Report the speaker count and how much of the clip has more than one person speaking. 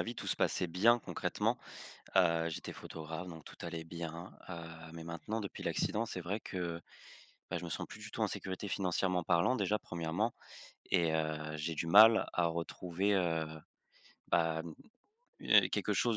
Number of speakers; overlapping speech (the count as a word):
one, no overlap